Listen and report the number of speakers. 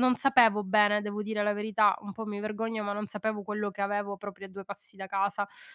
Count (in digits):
1